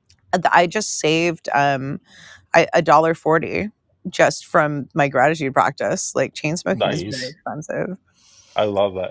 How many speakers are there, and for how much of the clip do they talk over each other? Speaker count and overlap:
2, about 7%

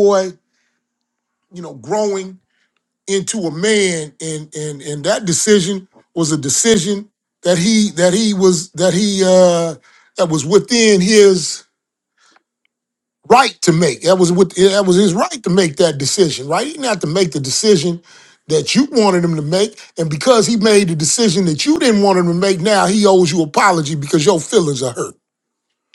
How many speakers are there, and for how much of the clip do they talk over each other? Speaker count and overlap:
1, no overlap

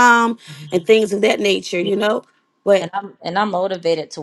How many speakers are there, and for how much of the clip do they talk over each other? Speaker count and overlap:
2, about 3%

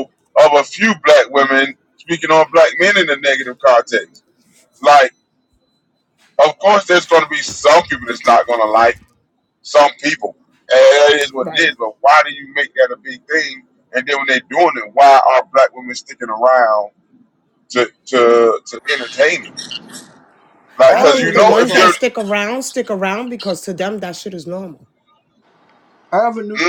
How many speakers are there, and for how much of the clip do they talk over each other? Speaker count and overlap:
3, about 6%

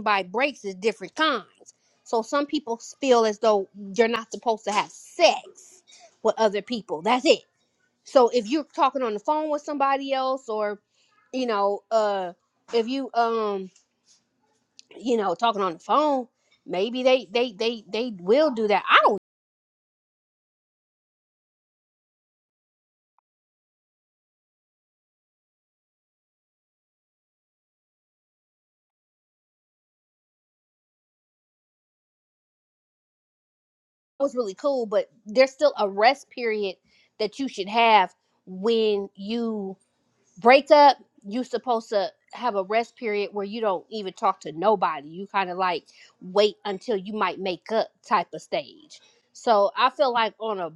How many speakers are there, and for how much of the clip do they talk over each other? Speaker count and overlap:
1, no overlap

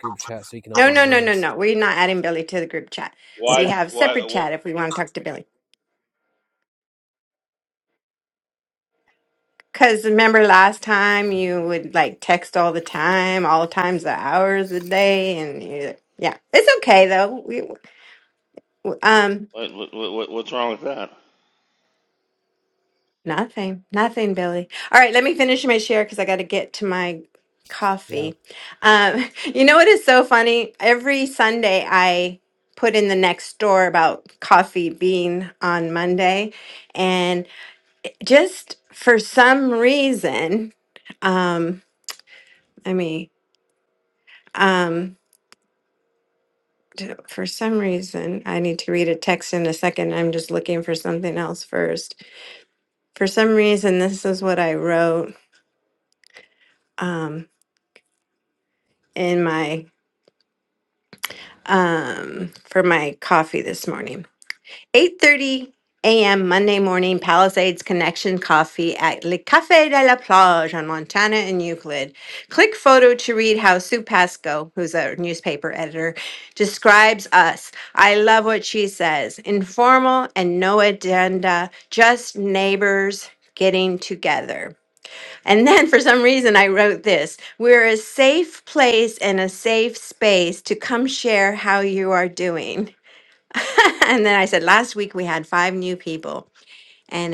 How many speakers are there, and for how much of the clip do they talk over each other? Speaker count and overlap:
3, about 2%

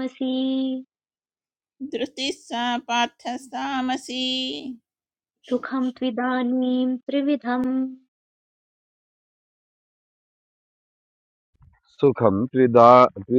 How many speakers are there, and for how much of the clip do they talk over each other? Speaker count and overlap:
3, no overlap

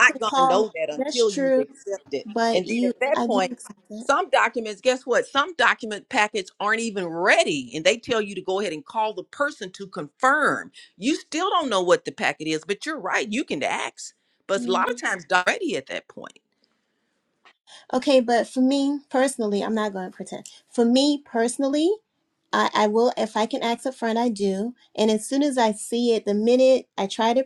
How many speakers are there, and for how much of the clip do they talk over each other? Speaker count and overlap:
2, about 12%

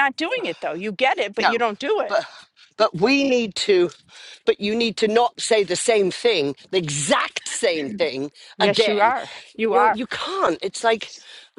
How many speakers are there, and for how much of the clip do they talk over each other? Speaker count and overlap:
2, about 9%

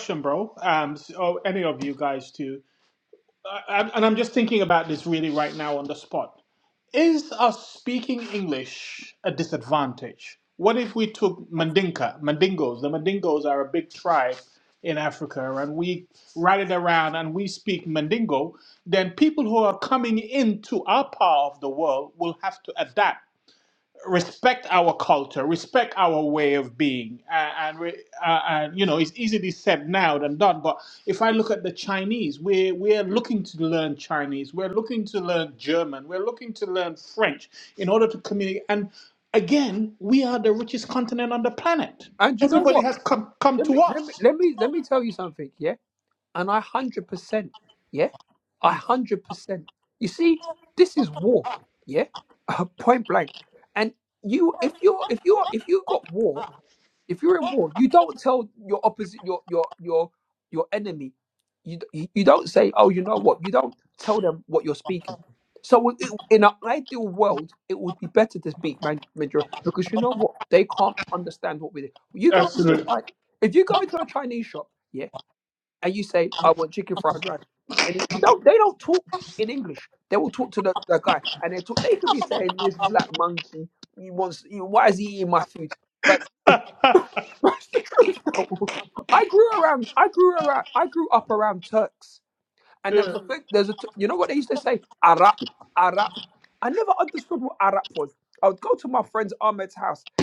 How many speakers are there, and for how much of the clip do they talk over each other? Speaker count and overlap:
2, about 2%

